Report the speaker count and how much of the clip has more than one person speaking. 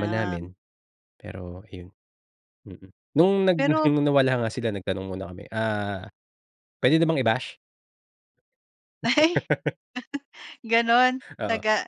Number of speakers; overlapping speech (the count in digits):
2, about 8%